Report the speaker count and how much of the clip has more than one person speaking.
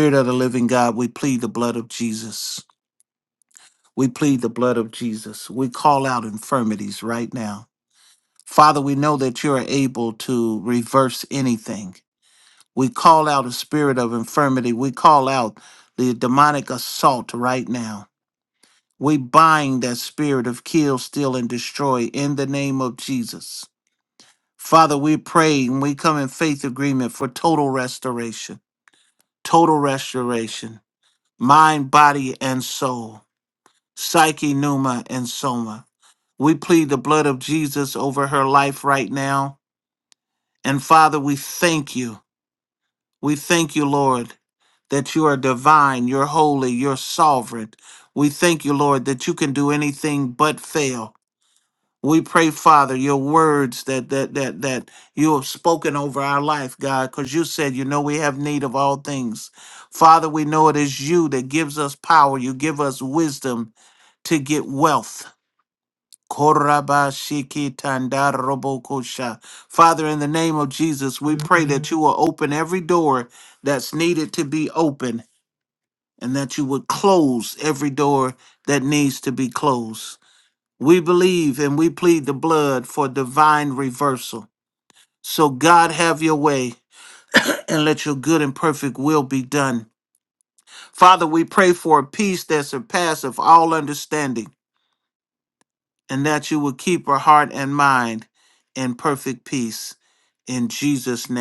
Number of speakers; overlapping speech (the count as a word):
one, no overlap